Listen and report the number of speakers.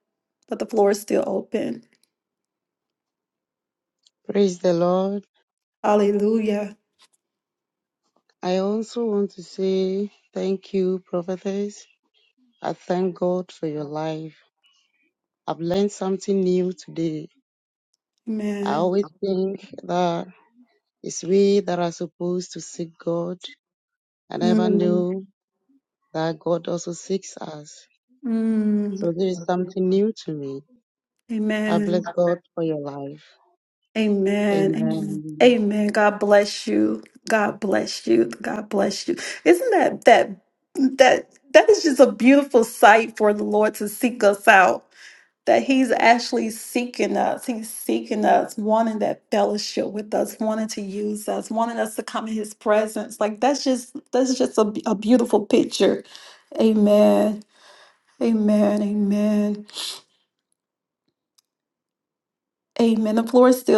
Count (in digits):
2